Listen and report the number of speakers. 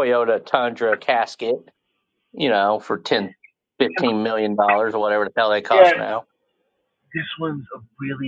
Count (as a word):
two